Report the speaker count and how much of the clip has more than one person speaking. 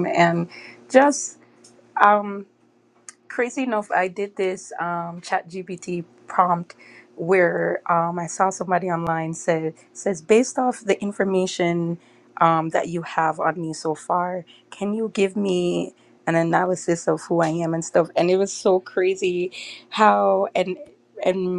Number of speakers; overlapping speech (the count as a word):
one, no overlap